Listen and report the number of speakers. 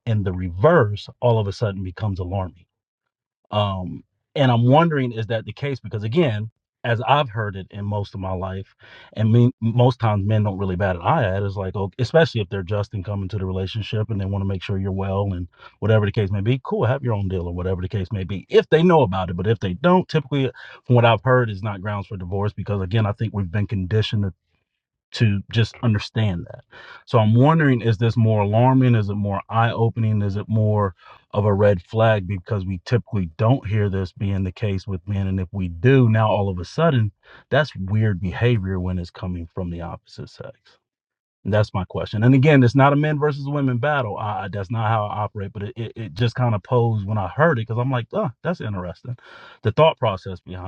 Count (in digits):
1